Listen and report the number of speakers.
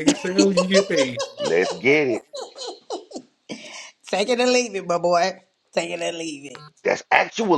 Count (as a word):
three